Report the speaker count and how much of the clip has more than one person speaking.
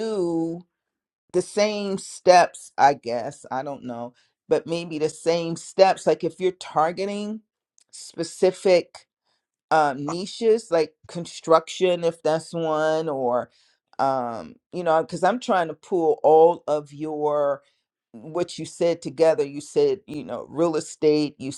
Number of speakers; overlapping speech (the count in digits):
1, no overlap